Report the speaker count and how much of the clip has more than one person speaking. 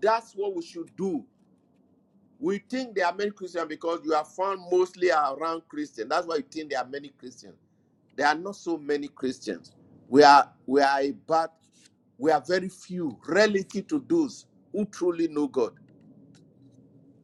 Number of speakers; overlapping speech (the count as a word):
one, no overlap